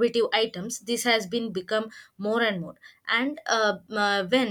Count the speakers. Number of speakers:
1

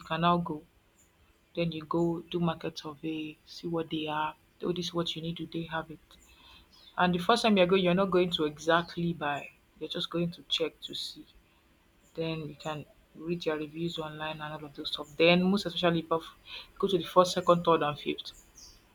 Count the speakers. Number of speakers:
1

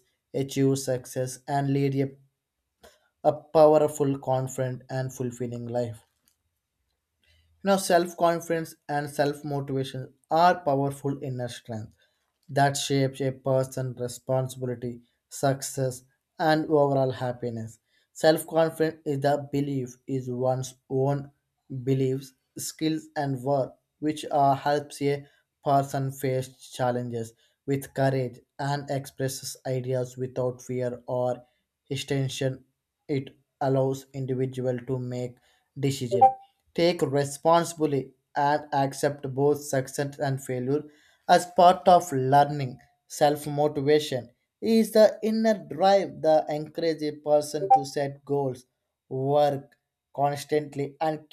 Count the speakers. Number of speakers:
1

